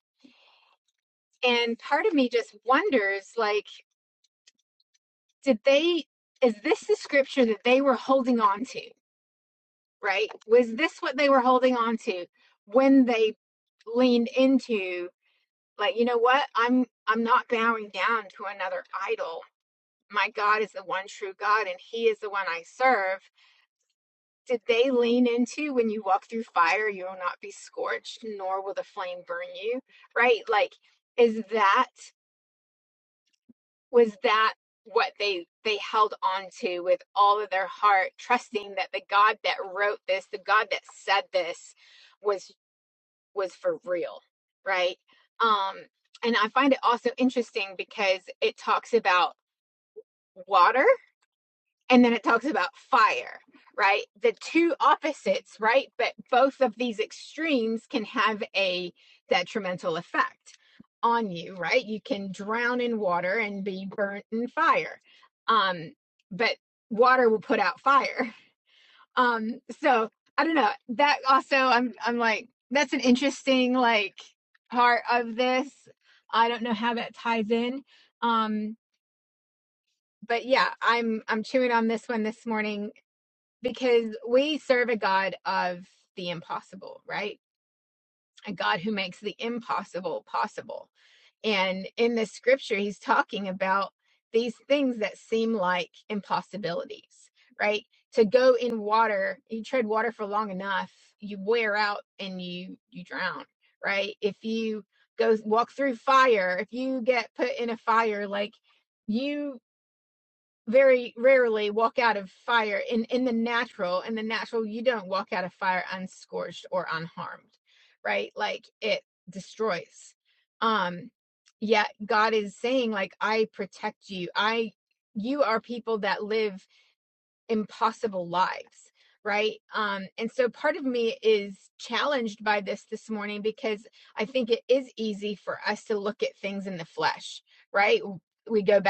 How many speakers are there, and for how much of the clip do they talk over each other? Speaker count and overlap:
one, no overlap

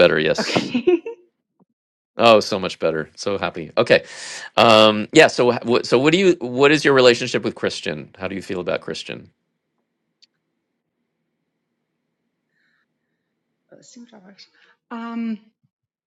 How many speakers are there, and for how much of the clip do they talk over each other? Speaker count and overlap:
two, under 1%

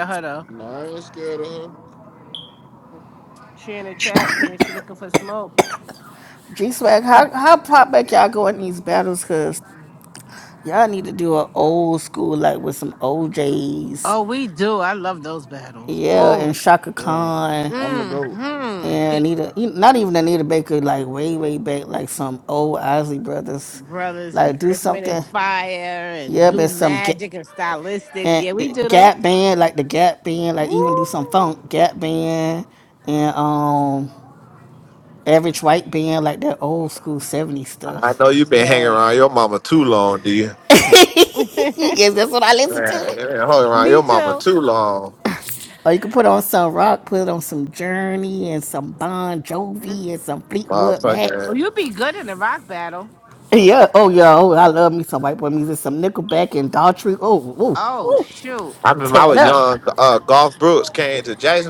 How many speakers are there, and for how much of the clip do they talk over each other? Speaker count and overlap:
four, about 15%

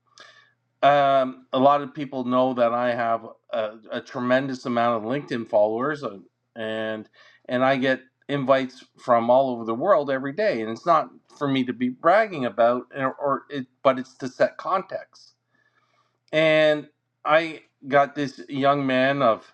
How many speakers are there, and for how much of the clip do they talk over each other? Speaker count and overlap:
one, no overlap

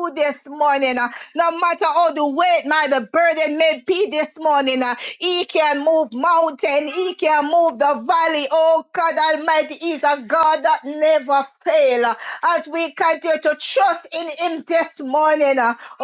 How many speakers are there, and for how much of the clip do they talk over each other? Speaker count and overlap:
one, no overlap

